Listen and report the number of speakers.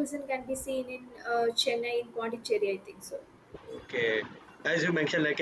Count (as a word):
two